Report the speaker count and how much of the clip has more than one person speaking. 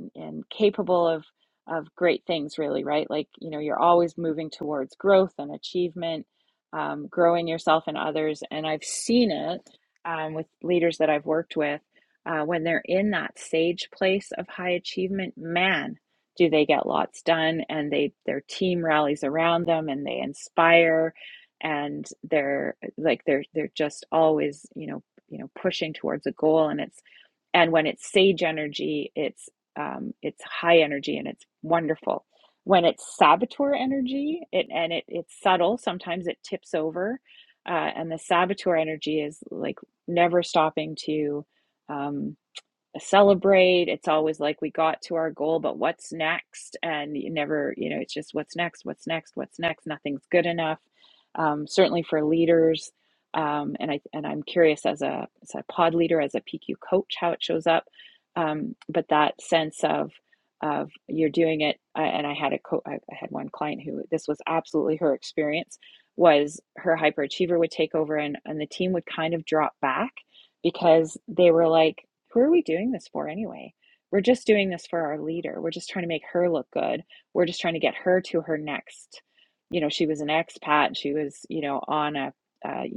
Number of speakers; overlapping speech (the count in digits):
1, no overlap